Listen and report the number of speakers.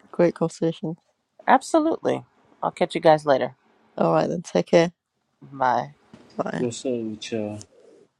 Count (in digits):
3